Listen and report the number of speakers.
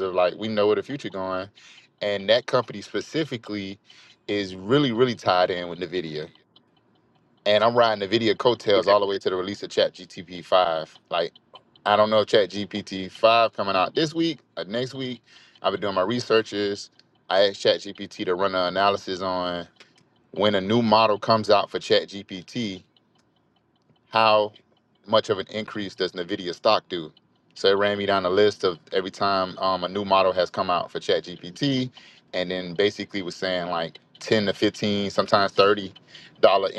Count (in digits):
1